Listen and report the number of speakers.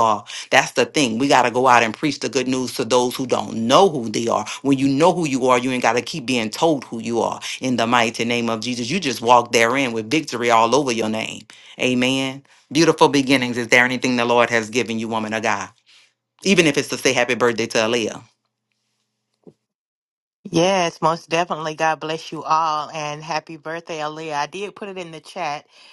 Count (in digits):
2